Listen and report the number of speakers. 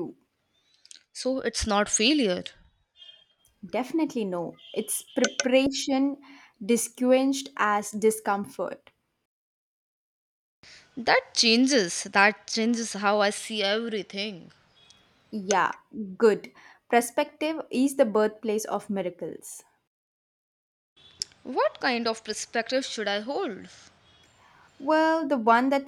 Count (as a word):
two